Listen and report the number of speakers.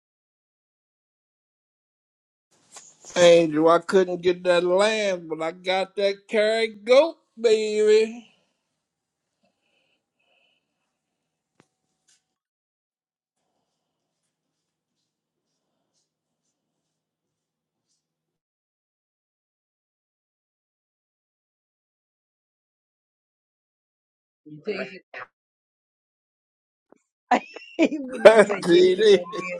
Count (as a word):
two